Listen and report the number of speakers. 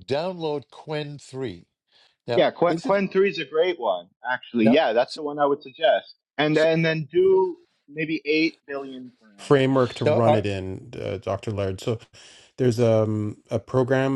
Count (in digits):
3